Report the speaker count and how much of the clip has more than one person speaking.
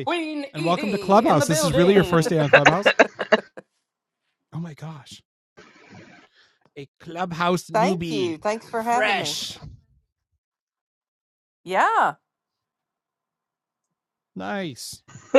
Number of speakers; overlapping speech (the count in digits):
3, about 18%